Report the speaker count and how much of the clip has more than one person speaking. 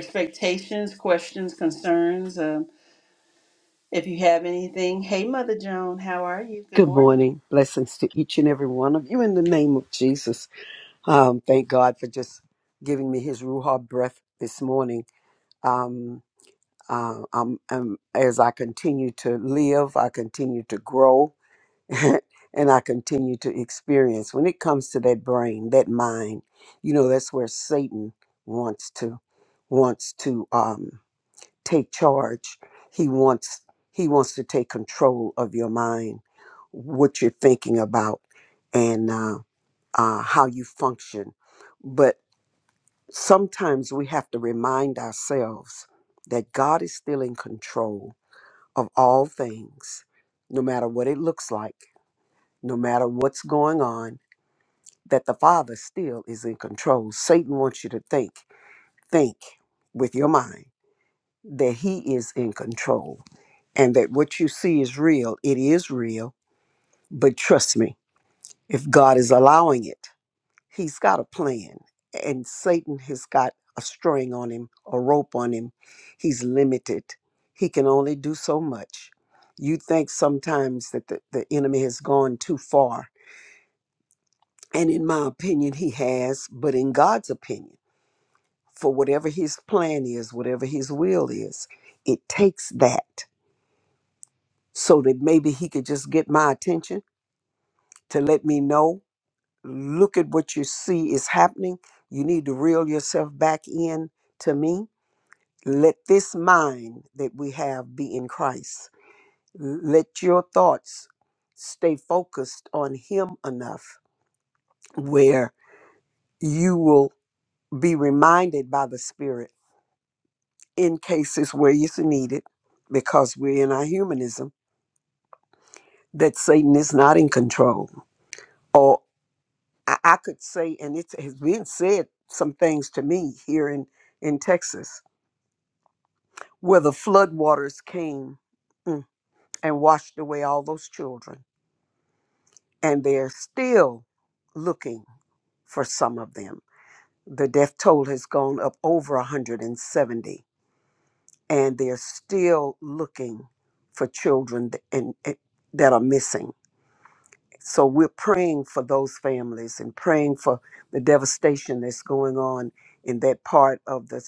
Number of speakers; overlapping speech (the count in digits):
2, under 1%